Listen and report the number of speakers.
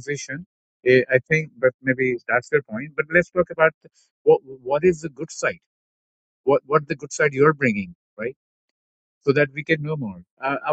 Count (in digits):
1